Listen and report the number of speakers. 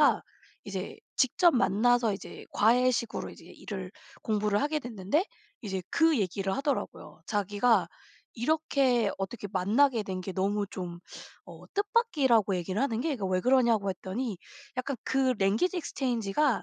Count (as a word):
one